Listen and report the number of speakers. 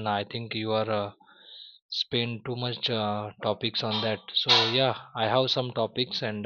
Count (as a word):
one